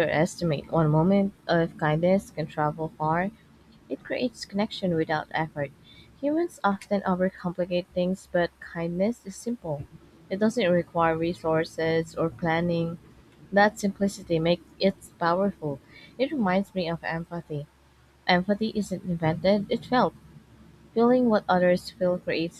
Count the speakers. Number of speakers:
1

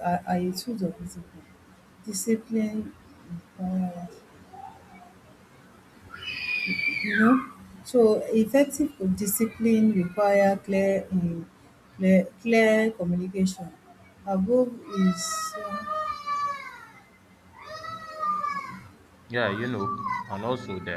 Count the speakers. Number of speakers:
2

